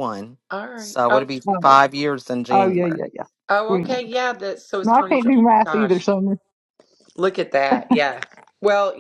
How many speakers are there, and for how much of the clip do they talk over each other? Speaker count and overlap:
3, about 29%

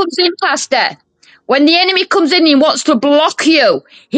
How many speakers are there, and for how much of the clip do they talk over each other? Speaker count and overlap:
1, no overlap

